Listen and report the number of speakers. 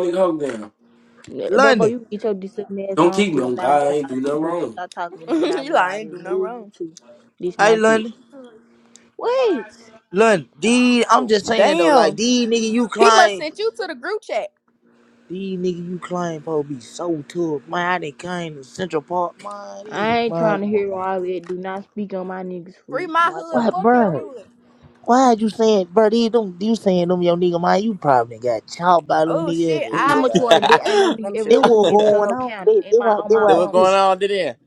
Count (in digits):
5